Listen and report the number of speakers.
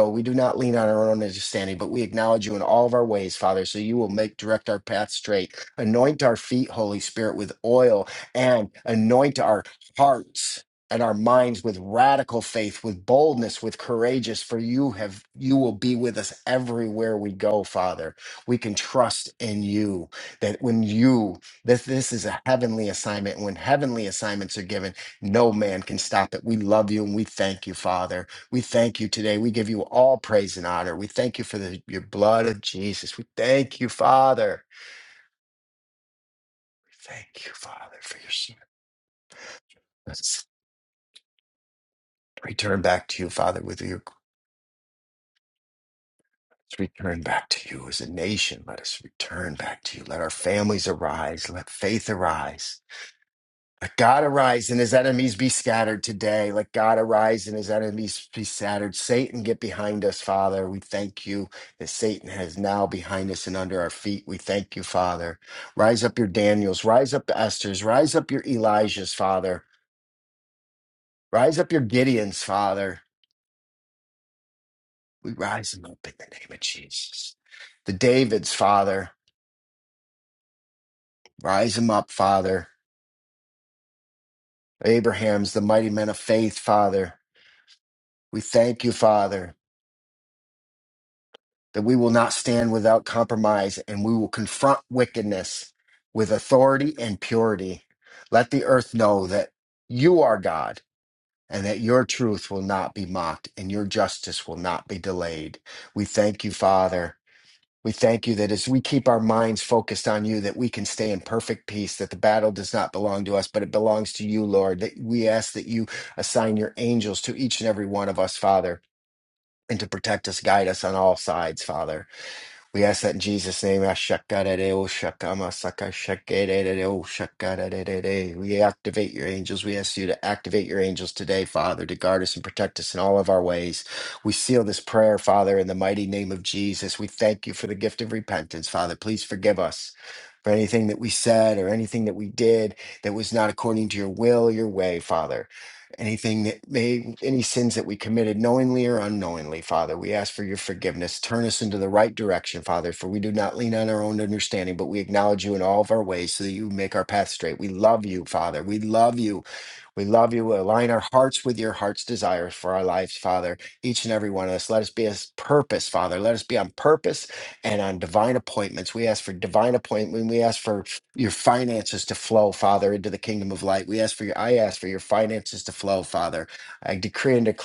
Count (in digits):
1